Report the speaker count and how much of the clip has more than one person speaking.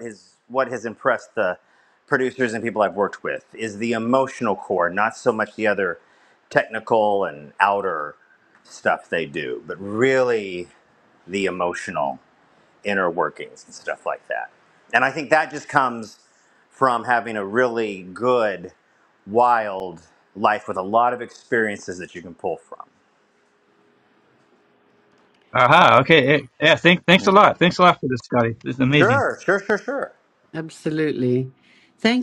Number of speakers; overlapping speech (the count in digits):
3, about 1%